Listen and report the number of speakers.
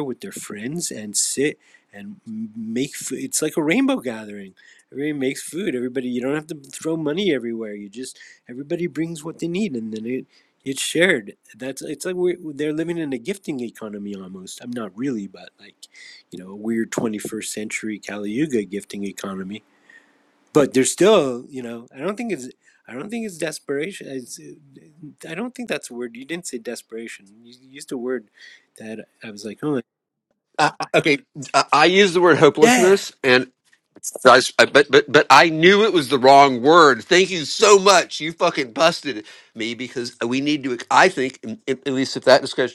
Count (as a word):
two